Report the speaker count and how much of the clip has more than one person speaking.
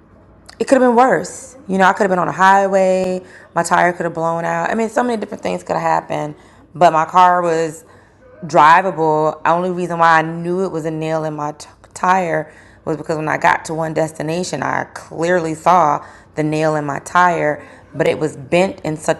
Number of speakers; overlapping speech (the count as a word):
one, no overlap